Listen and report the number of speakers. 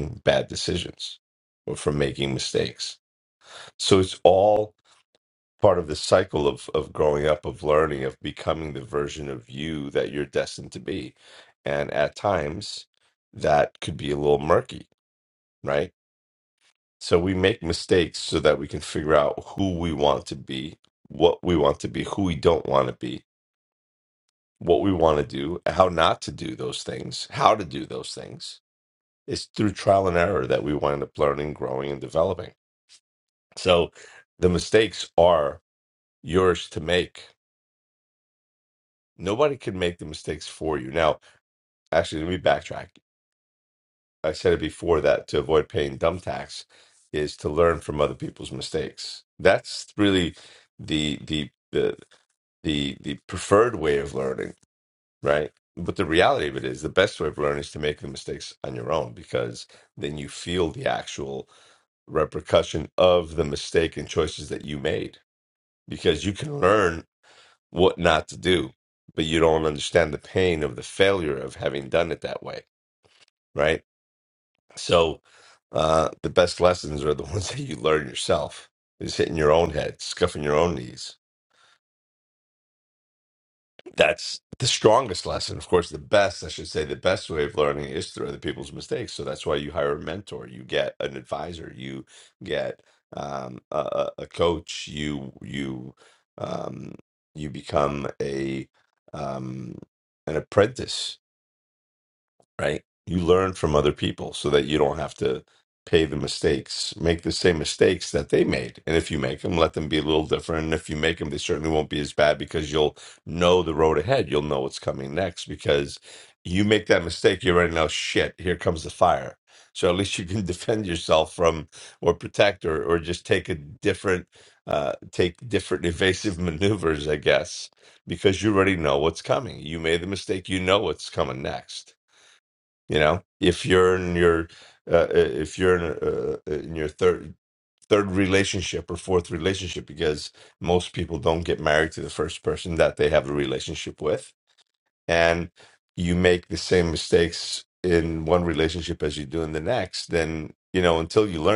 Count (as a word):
one